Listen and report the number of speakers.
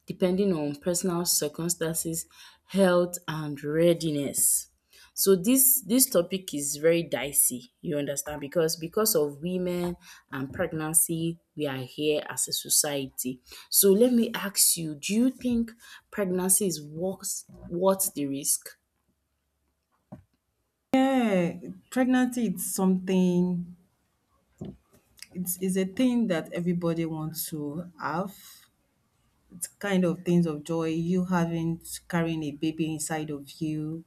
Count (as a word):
two